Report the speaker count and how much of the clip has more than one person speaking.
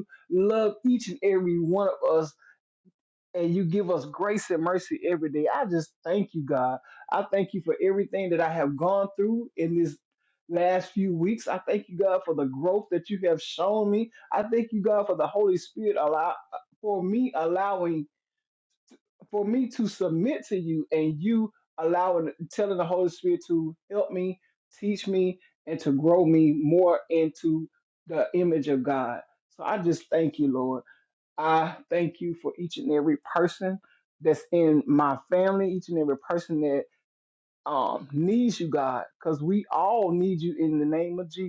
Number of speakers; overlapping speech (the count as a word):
one, no overlap